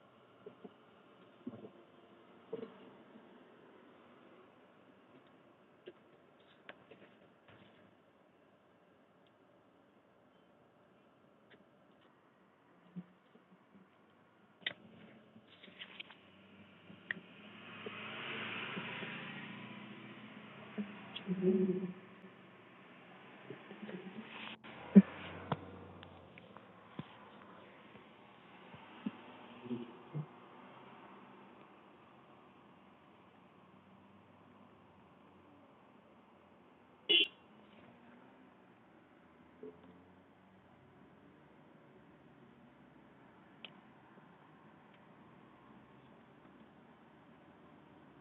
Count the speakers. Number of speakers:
0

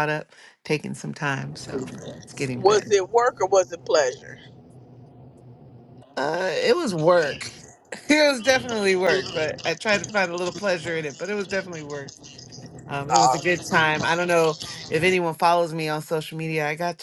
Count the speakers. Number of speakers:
2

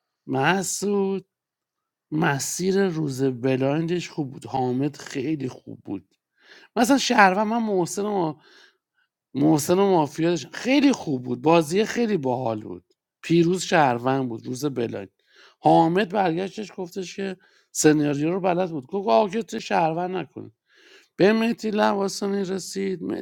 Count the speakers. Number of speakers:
1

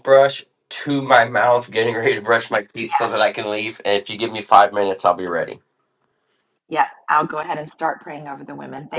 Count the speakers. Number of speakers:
2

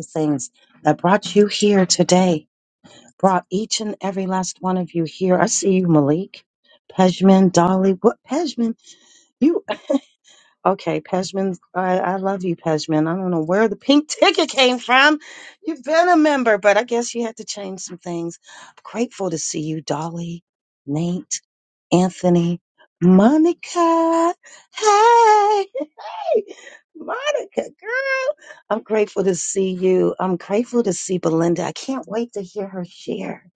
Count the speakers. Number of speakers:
1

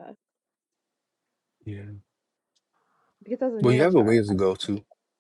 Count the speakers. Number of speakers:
2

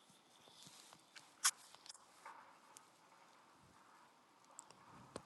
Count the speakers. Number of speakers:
0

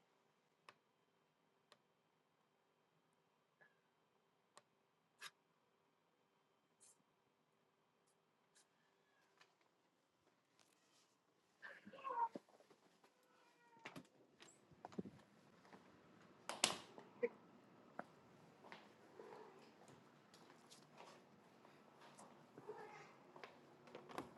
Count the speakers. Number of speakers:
0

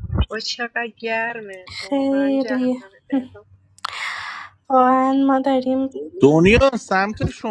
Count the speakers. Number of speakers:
3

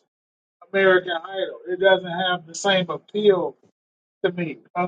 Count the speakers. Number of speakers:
1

